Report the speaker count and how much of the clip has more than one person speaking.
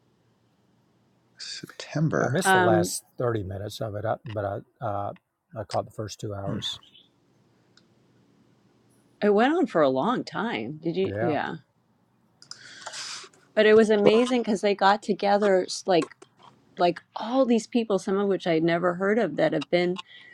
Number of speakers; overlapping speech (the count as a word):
three, about 5%